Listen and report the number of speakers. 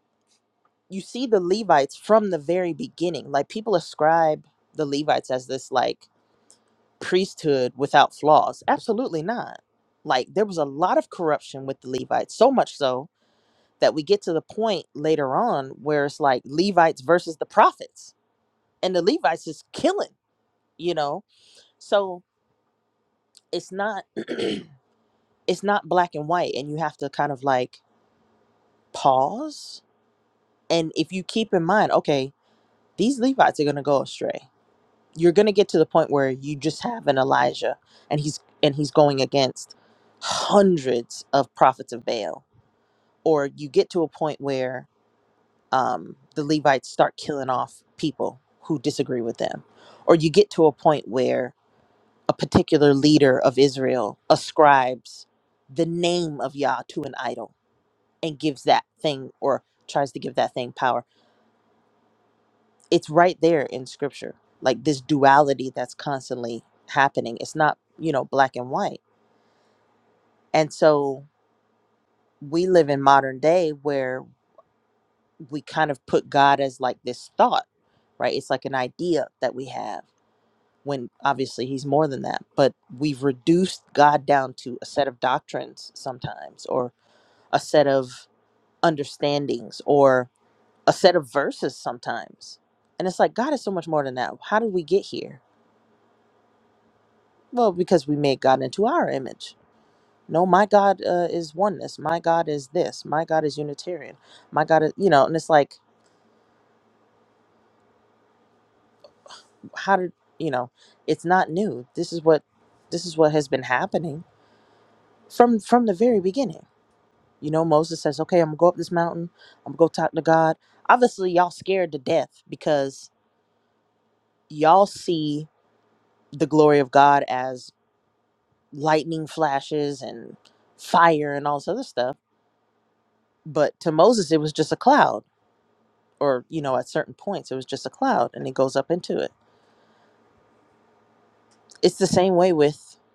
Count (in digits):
1